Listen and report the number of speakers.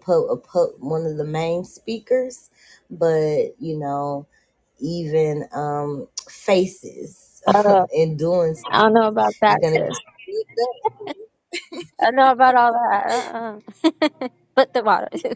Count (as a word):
two